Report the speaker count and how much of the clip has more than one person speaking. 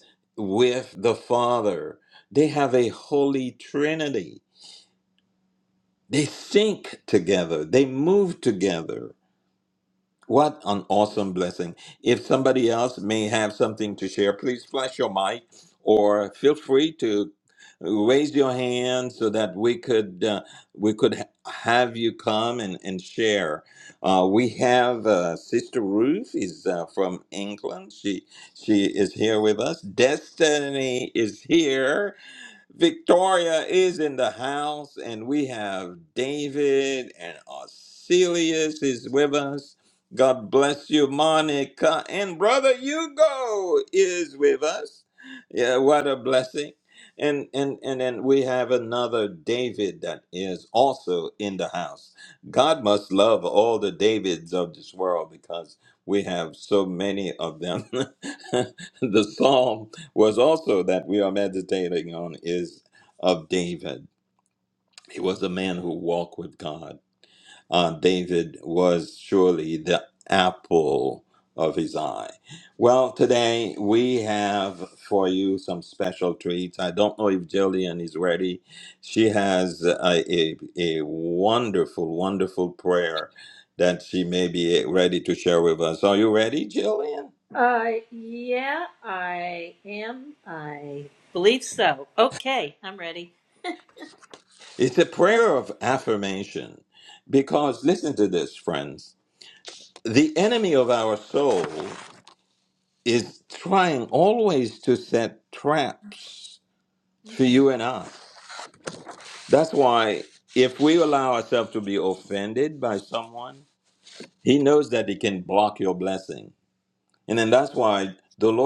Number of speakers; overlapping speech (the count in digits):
2, under 1%